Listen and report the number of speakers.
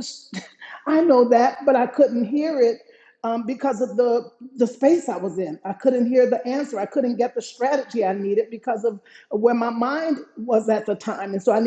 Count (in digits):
1